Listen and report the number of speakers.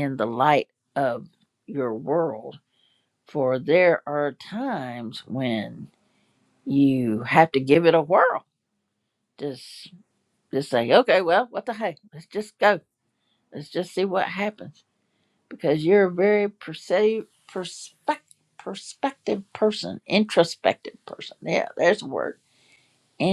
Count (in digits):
1